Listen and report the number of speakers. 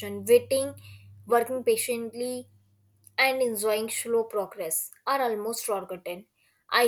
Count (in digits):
1